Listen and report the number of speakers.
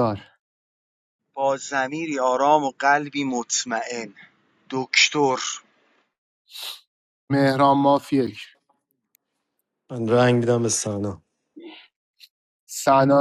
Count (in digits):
3